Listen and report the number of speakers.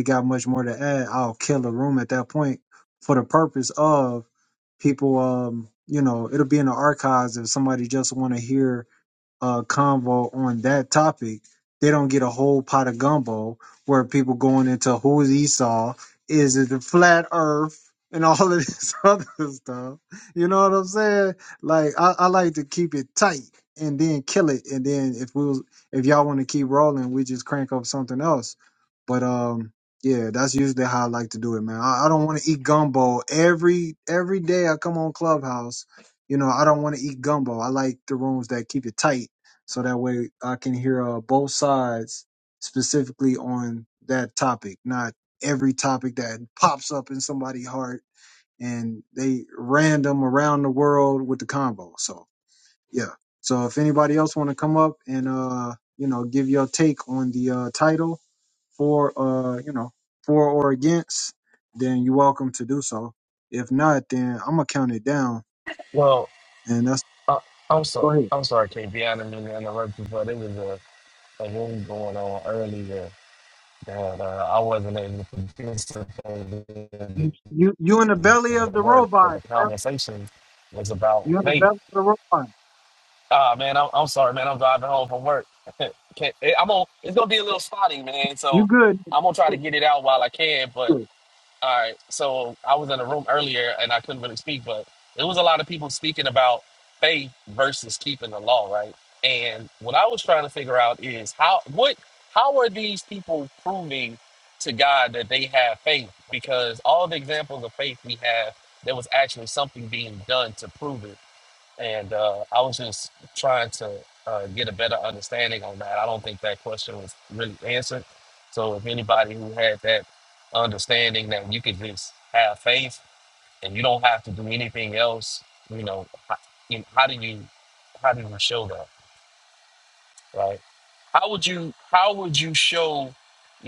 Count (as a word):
two